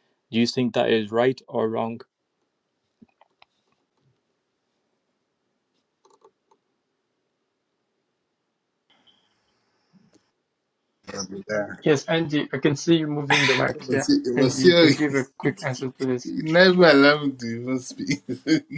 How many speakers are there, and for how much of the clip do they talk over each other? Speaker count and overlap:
three, about 6%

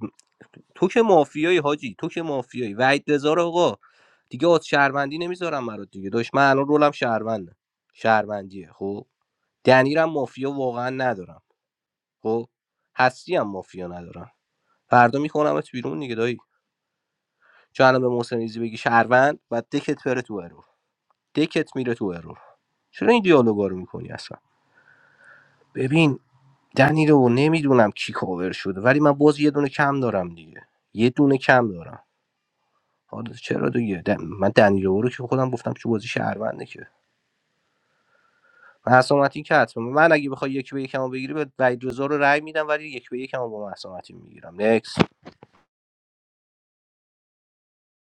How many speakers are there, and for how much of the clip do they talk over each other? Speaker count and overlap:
one, no overlap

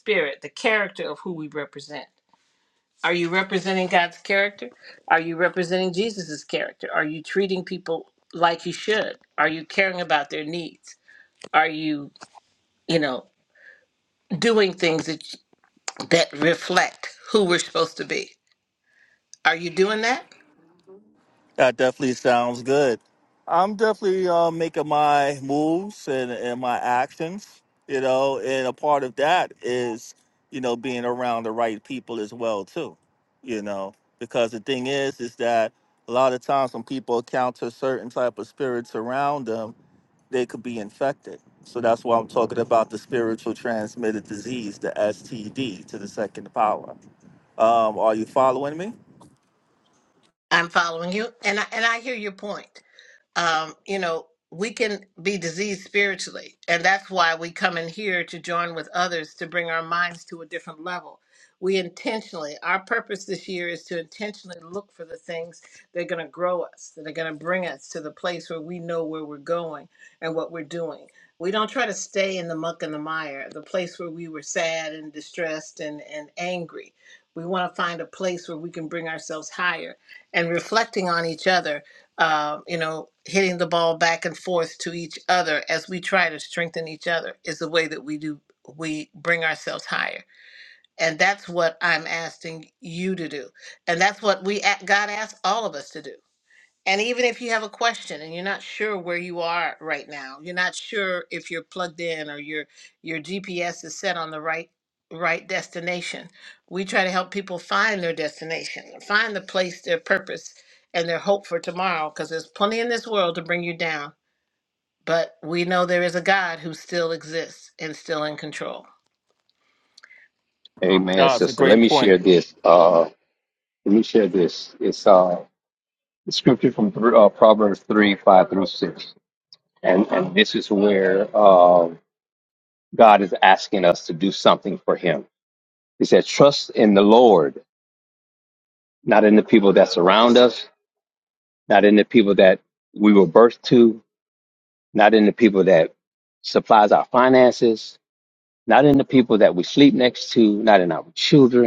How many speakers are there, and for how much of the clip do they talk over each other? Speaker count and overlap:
three, no overlap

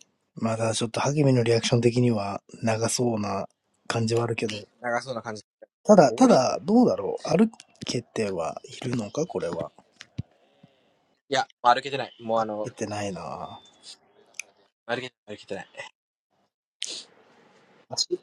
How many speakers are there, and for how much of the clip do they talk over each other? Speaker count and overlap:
two, about 3%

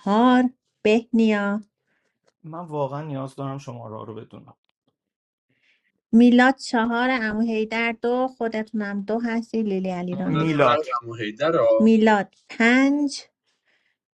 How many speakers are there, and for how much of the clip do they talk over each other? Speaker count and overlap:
three, about 6%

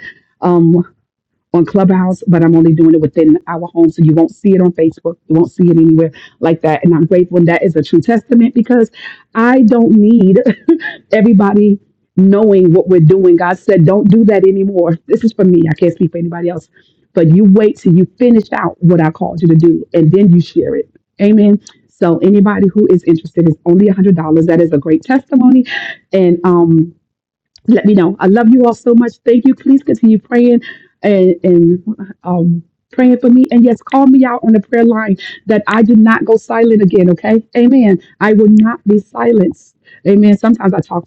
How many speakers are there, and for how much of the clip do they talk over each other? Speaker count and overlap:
one, no overlap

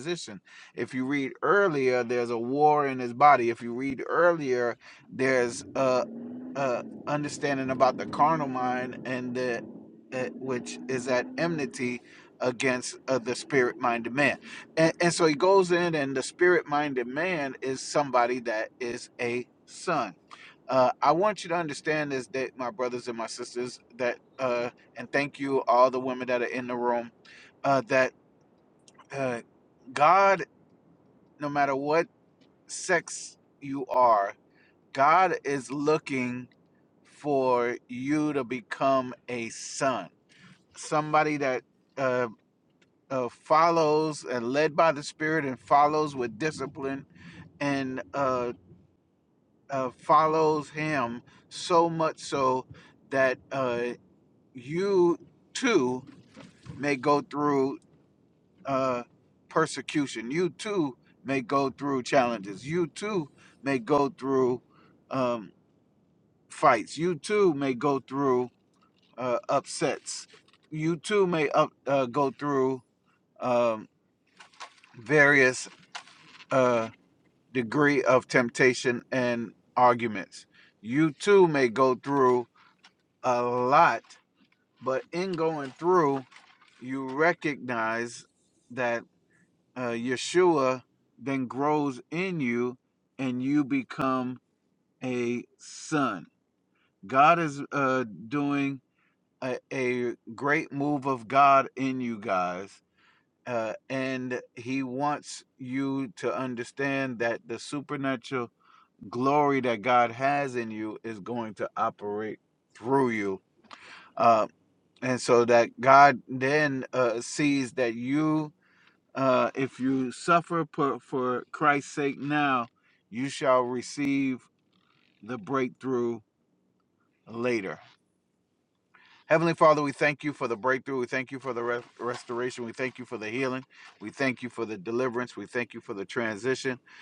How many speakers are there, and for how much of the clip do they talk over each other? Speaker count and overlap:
one, no overlap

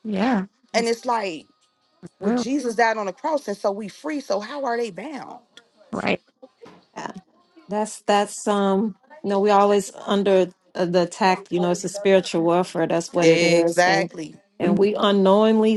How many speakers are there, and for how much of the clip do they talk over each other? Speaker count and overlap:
three, about 9%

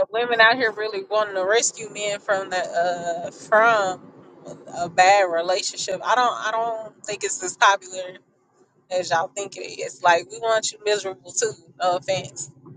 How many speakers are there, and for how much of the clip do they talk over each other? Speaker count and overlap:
one, no overlap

